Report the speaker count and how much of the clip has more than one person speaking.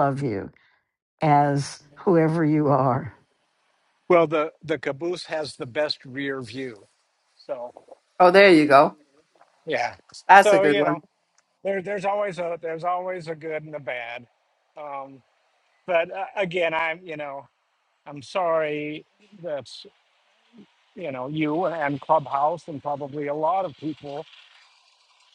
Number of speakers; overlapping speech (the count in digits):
3, about 2%